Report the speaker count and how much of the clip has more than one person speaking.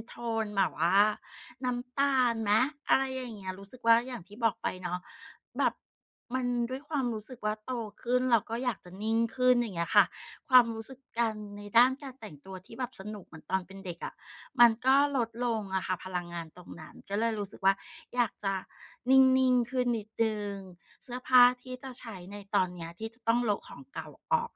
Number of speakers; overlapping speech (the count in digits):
1, no overlap